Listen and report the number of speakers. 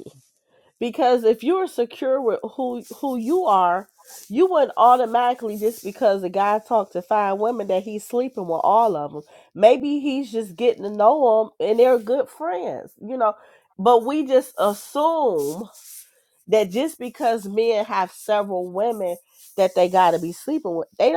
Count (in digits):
1